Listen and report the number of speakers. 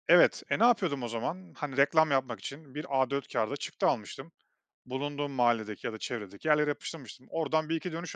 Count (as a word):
one